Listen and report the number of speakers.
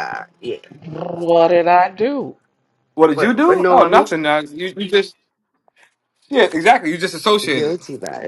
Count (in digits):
3